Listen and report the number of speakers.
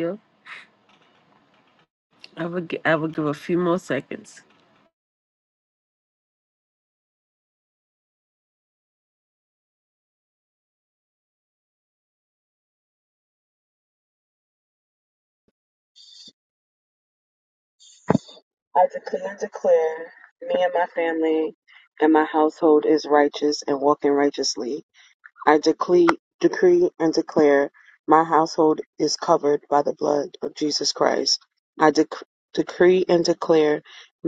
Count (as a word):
two